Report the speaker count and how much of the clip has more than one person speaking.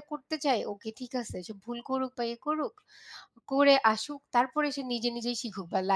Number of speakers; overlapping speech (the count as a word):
one, no overlap